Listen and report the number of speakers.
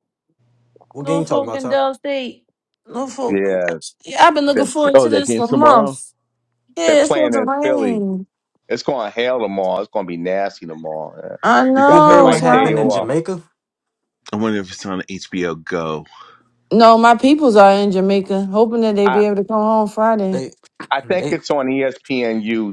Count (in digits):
4